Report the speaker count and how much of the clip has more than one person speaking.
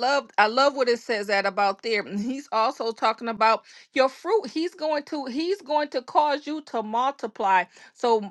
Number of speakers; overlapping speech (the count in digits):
1, no overlap